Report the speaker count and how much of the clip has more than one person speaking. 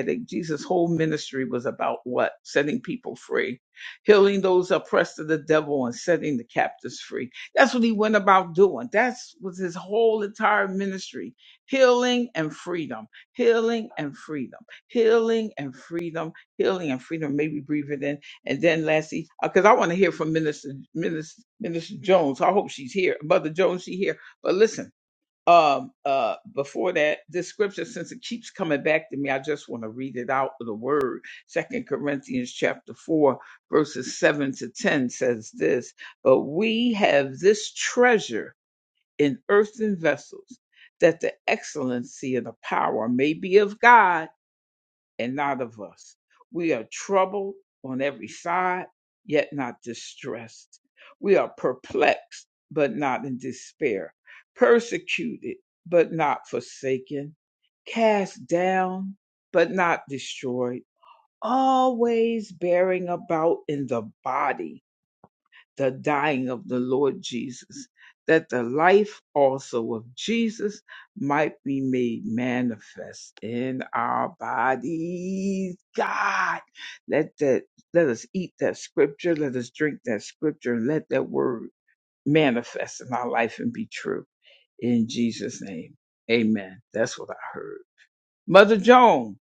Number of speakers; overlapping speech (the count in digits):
1, no overlap